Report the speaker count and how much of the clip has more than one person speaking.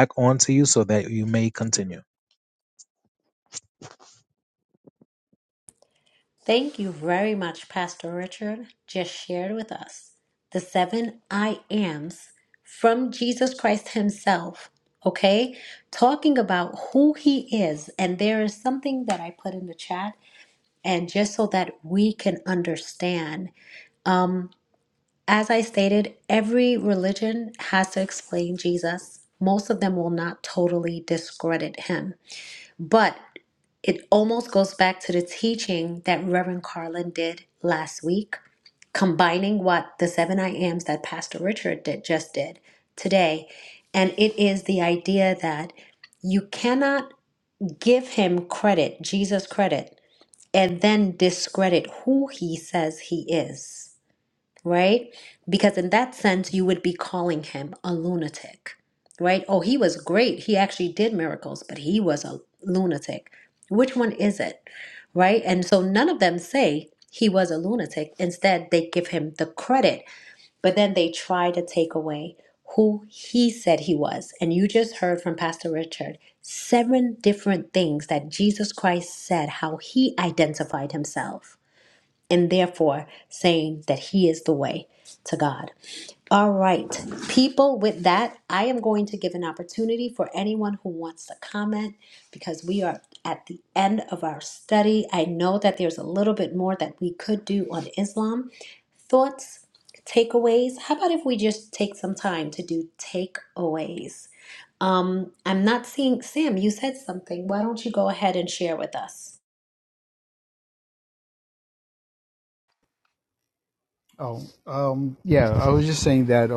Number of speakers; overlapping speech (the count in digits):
3, no overlap